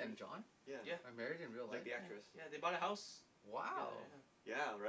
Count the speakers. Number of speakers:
three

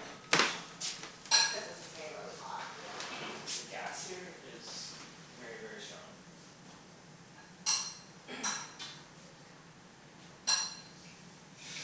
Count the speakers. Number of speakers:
two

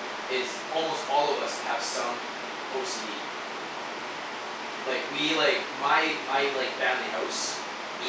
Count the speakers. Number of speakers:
one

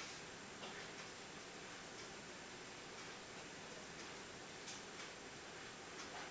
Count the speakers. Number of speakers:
zero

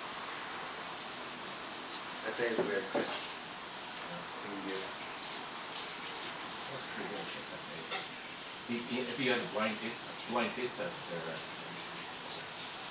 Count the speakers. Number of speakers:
two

